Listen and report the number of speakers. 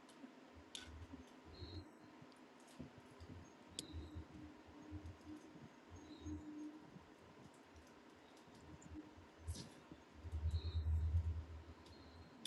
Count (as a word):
zero